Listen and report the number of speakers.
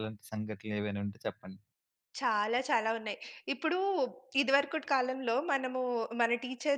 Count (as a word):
two